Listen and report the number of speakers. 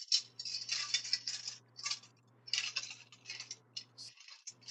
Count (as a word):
zero